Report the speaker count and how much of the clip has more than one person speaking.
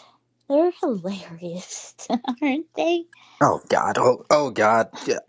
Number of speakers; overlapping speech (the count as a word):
two, no overlap